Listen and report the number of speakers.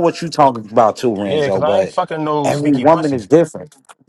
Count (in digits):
2